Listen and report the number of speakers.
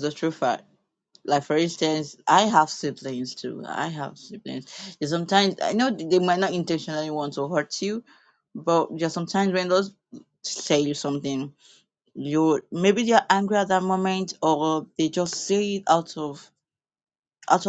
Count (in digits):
1